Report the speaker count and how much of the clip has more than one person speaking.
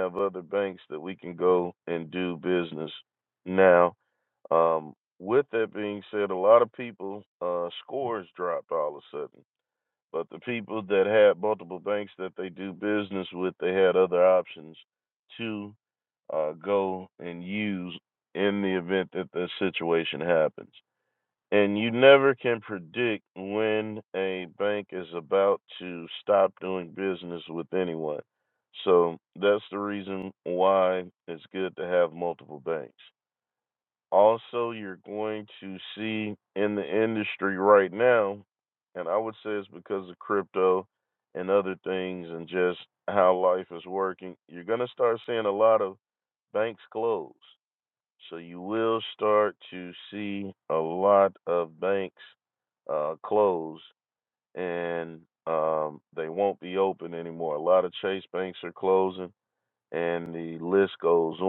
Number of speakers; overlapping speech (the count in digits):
1, no overlap